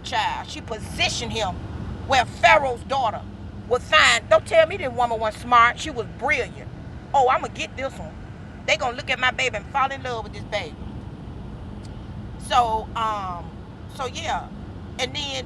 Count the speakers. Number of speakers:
one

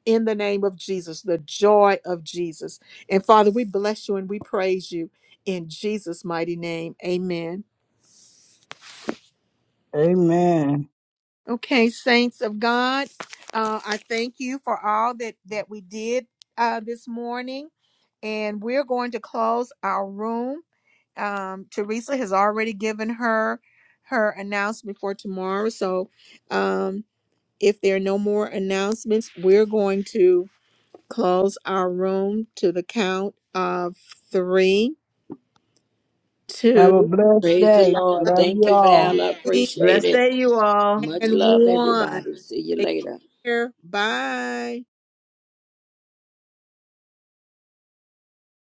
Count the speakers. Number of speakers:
four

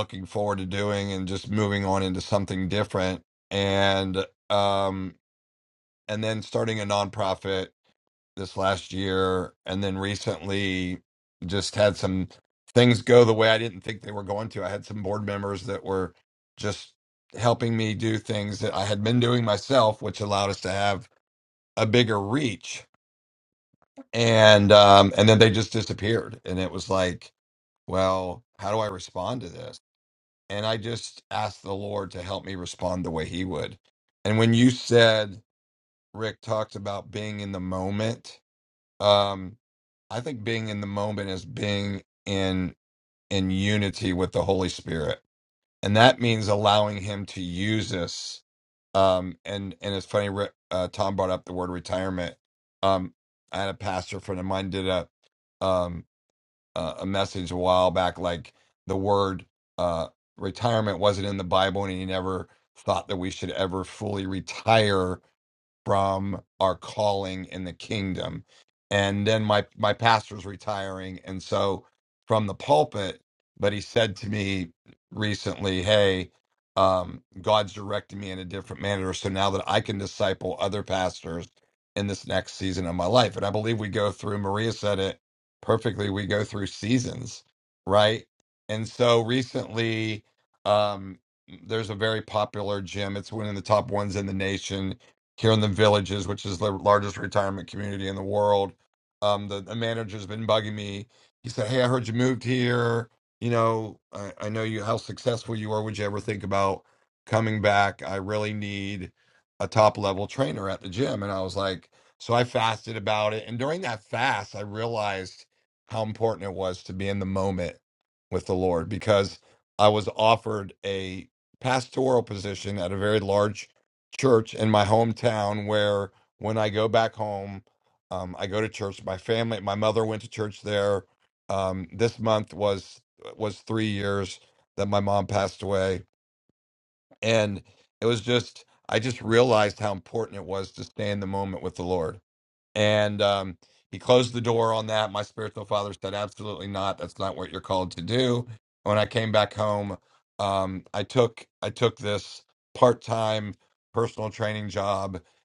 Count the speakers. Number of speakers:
one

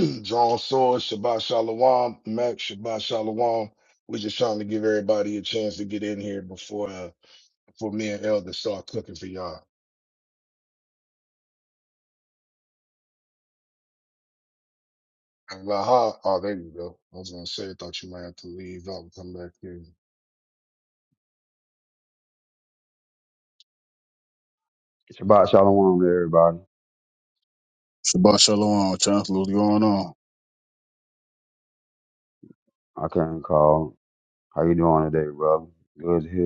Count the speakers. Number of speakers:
three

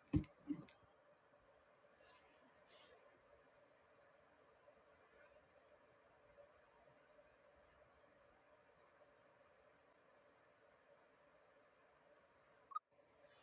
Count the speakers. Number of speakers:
zero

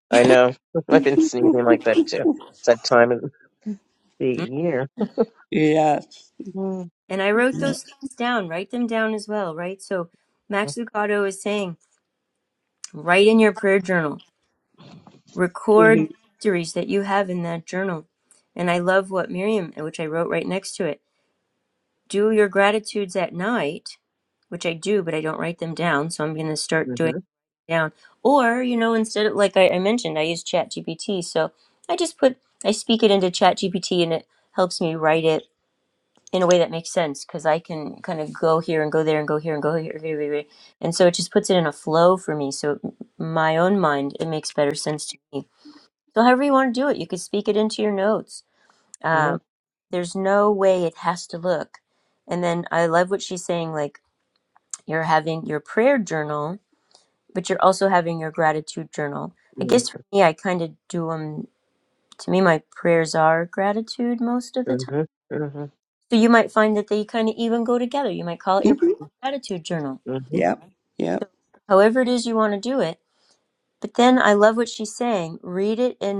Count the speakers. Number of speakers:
three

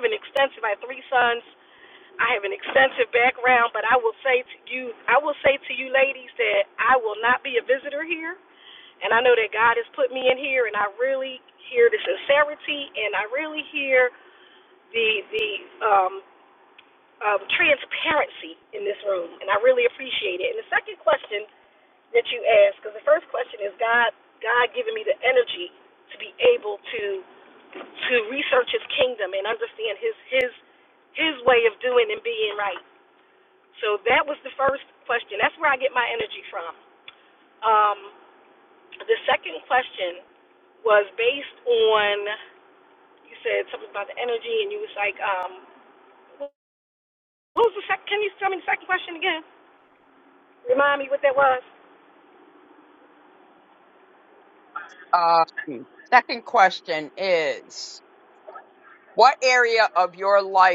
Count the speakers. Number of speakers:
two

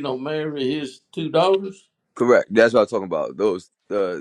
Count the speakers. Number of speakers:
two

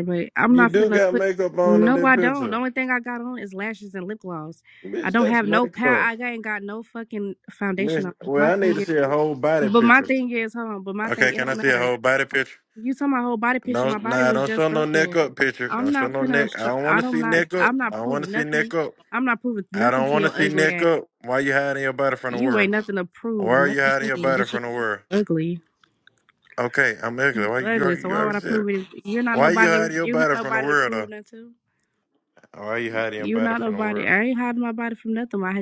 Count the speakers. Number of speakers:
two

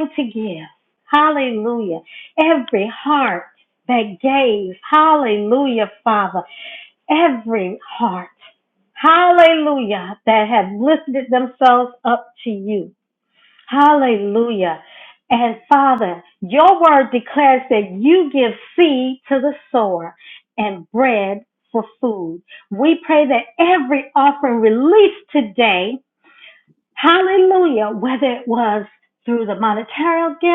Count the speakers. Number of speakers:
one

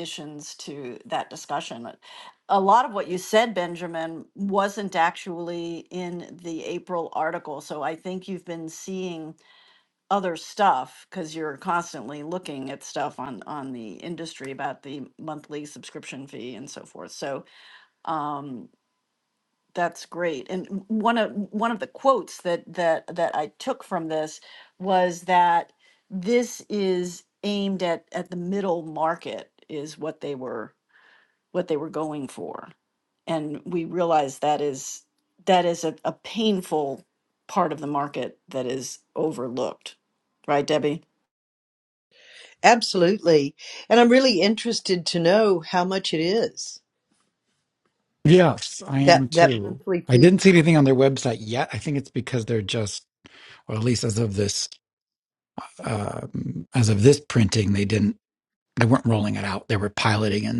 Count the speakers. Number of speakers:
three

